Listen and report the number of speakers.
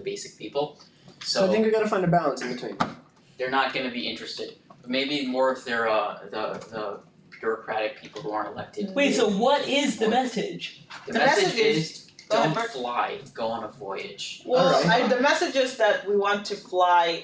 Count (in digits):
4